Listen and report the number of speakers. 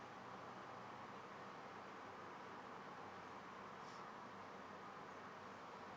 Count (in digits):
0